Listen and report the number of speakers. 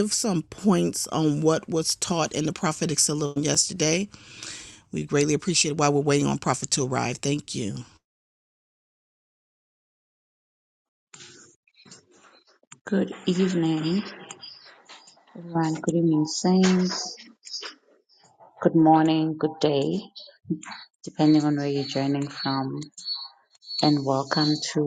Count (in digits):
2